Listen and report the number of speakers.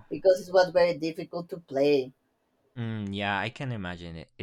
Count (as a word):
two